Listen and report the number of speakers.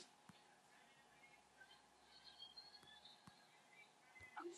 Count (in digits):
0